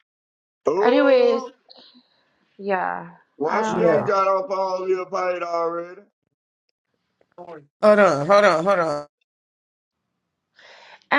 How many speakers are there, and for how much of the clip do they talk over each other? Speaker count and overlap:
3, about 13%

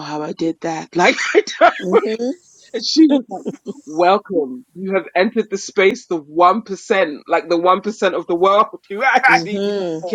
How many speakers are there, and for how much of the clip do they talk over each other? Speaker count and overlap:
2, about 3%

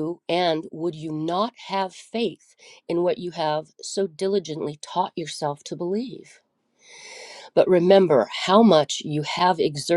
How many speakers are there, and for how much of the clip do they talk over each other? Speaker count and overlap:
1, no overlap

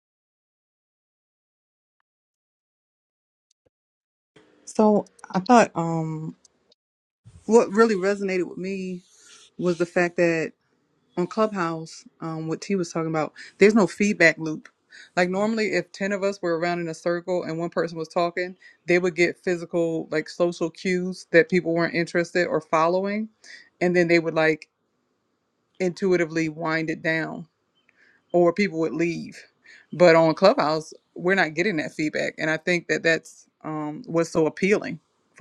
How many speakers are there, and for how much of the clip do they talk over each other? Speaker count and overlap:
1, no overlap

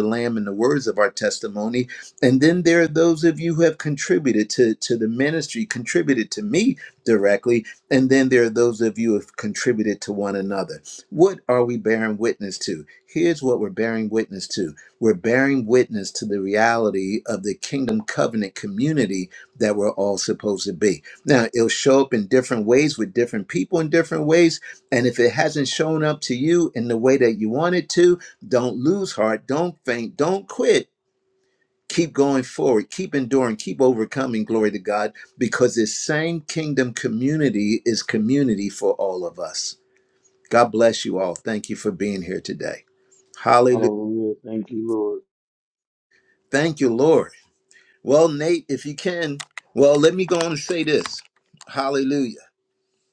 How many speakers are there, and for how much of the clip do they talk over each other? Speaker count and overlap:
2, under 1%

